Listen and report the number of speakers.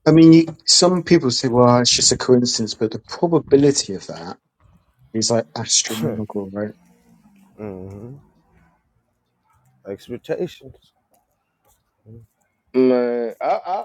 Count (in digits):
3